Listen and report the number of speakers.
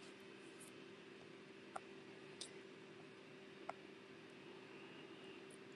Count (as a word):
zero